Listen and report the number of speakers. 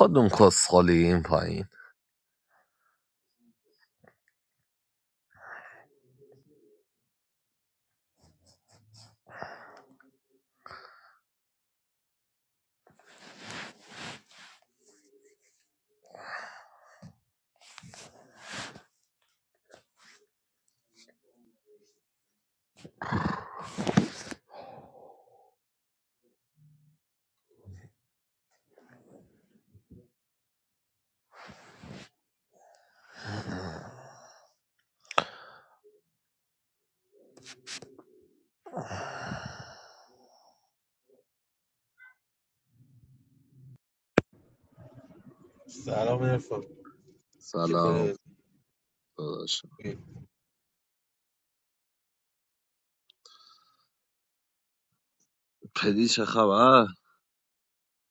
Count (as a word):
two